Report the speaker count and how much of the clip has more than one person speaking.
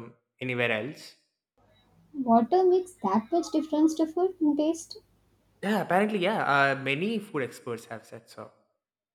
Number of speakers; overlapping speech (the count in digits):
2, no overlap